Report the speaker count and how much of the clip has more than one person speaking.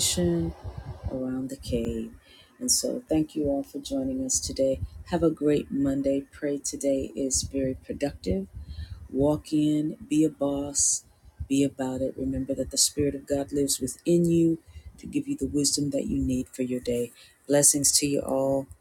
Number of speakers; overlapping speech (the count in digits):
1, no overlap